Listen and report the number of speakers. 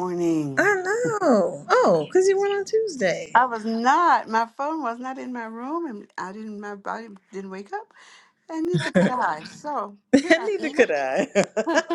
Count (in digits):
2